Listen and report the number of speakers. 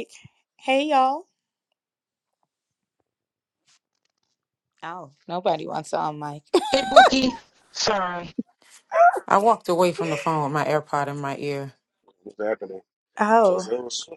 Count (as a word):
three